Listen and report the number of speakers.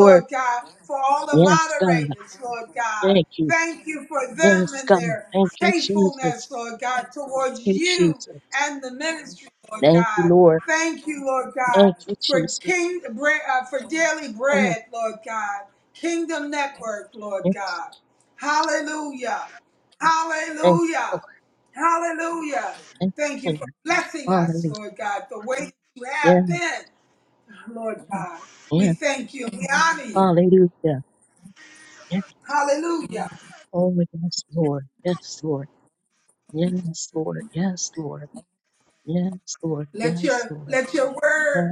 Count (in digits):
2